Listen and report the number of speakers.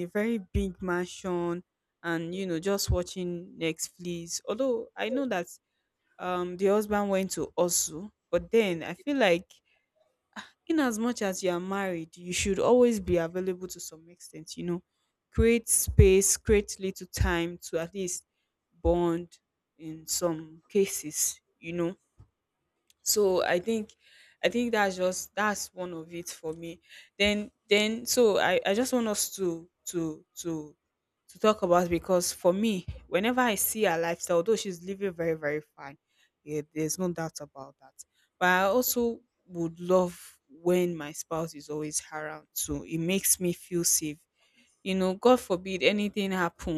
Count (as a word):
one